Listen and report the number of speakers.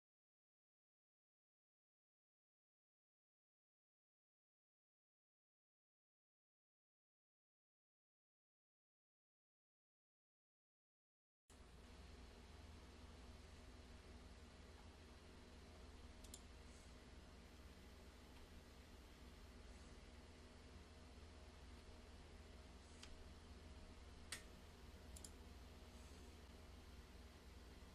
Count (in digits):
0